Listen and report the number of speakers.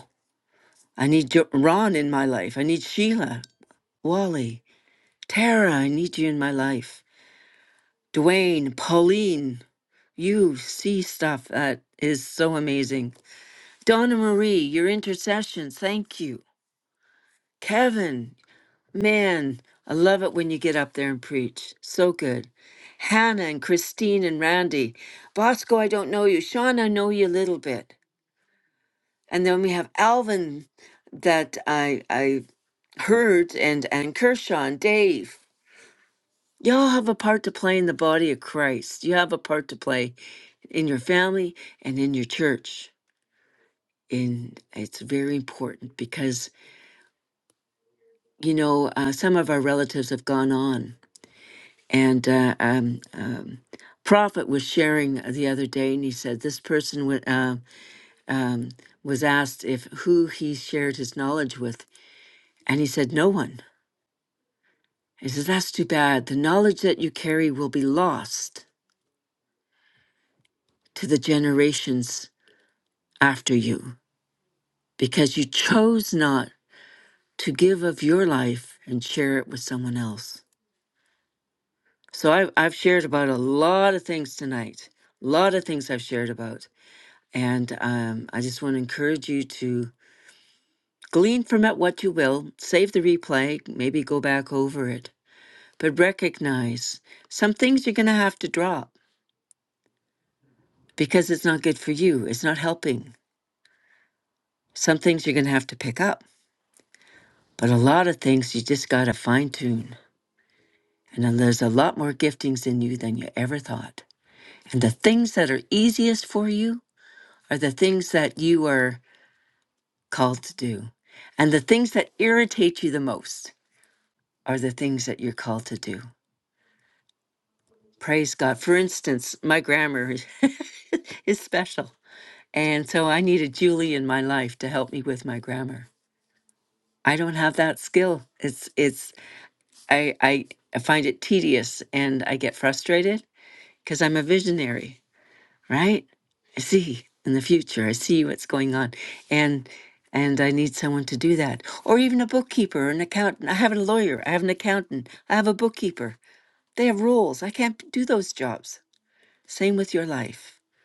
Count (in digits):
1